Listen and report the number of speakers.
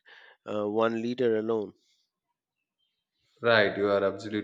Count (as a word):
two